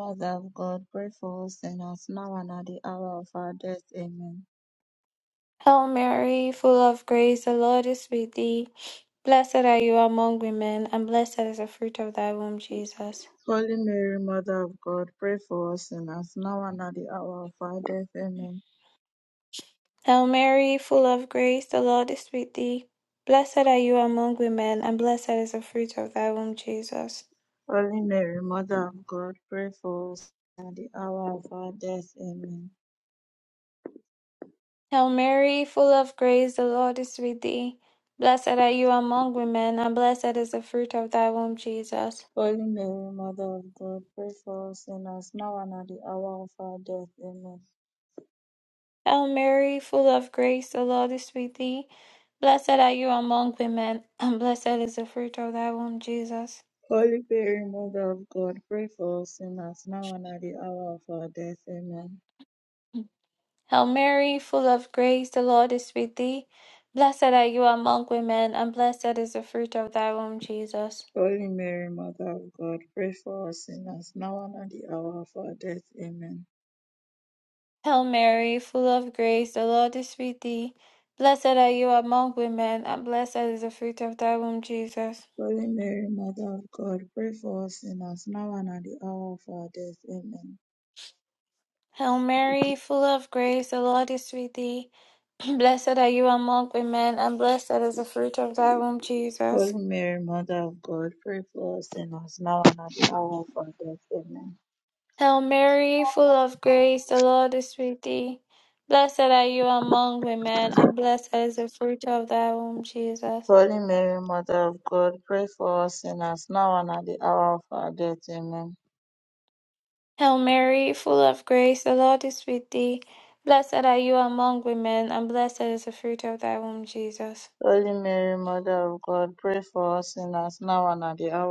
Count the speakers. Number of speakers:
two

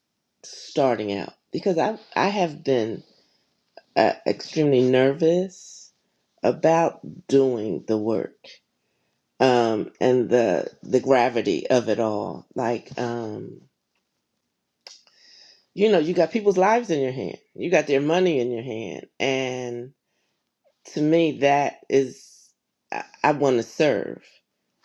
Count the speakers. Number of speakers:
one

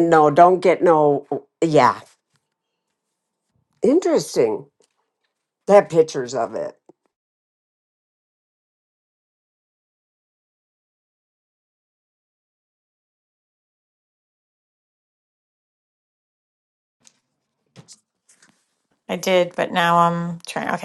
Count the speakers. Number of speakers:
two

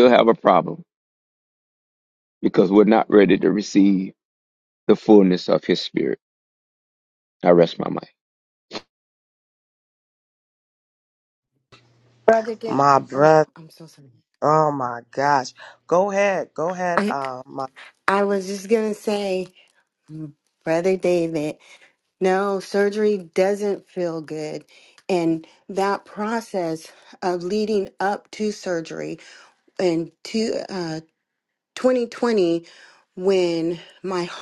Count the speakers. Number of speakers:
three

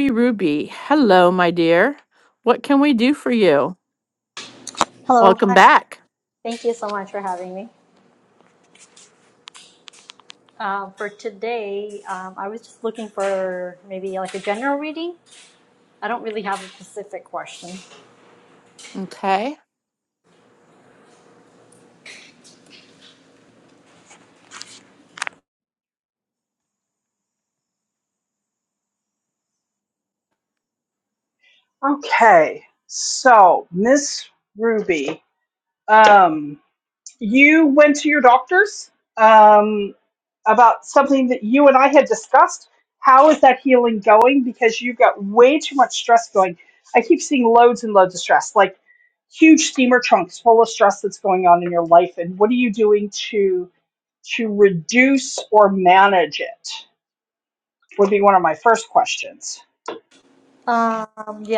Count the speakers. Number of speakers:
three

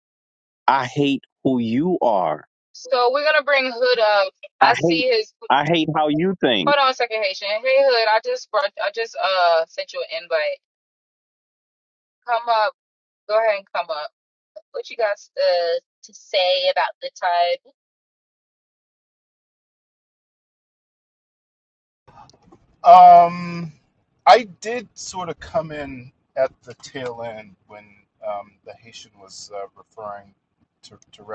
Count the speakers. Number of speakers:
three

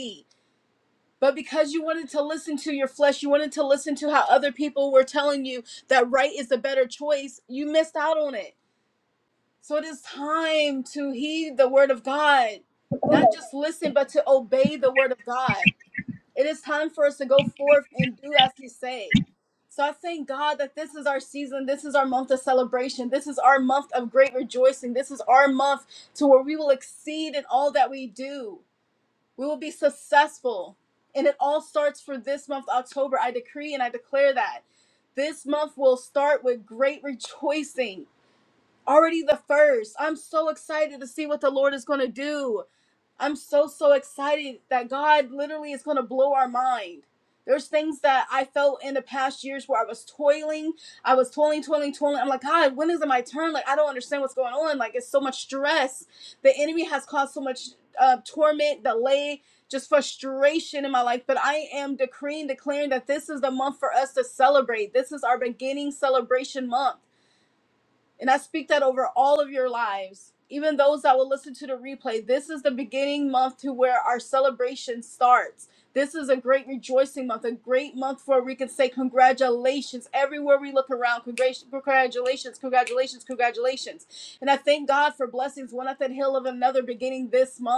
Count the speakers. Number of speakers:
one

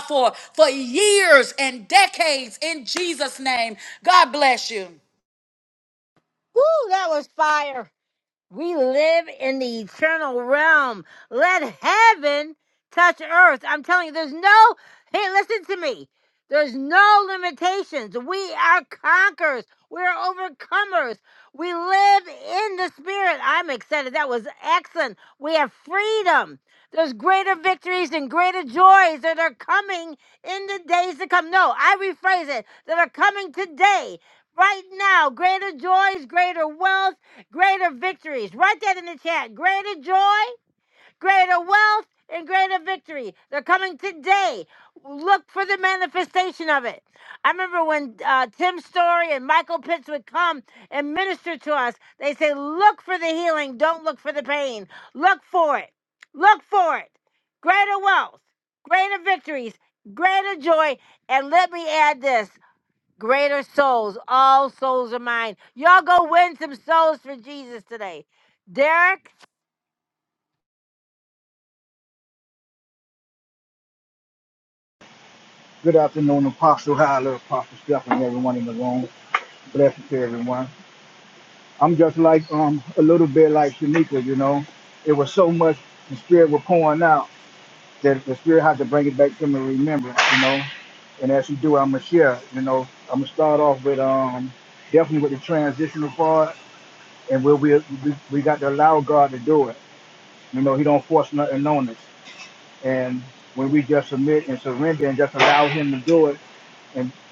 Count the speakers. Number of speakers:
three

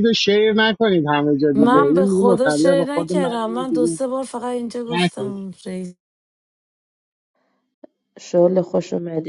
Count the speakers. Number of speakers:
three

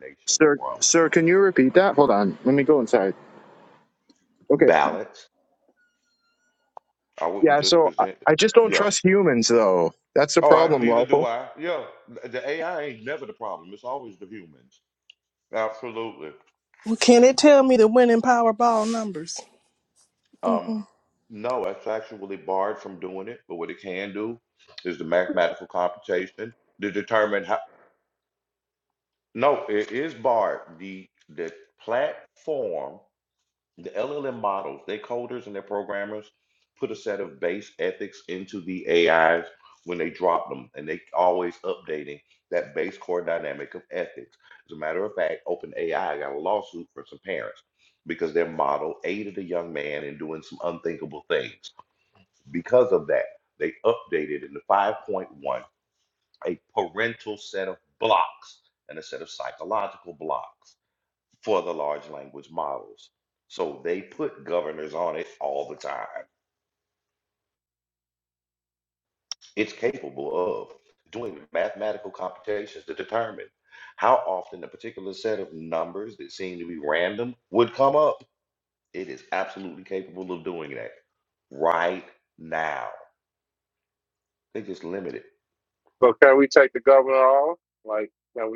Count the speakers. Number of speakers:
four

